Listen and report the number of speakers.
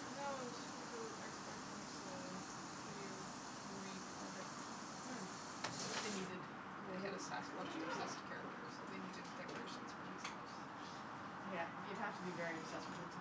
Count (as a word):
two